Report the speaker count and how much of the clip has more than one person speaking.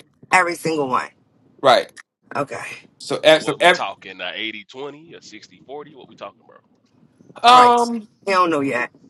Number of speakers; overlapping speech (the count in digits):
3, about 8%